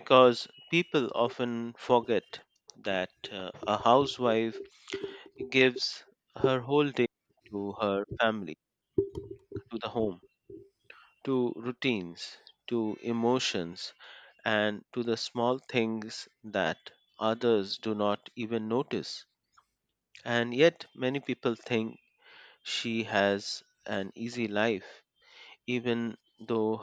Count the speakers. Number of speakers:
1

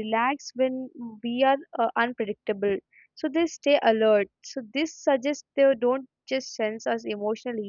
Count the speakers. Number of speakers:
1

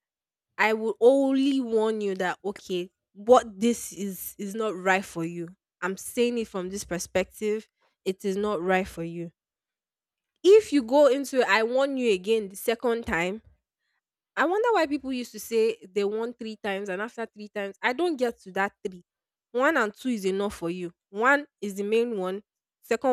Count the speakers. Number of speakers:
1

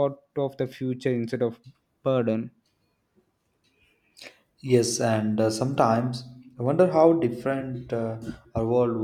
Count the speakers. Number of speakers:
2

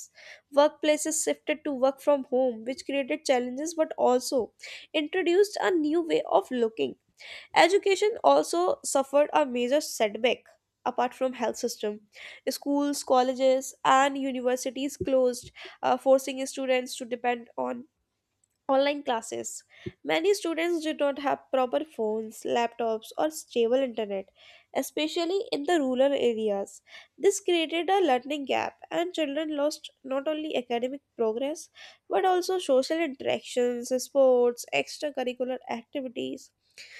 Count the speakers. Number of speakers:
1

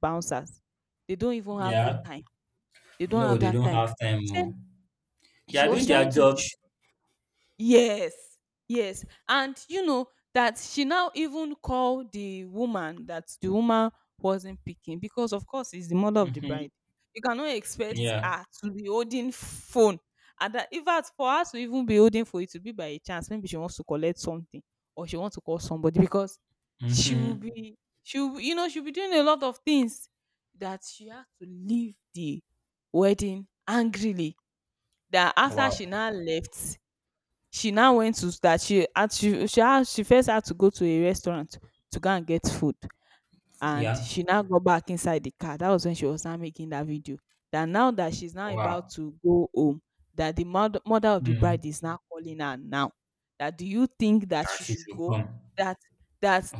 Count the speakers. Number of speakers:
2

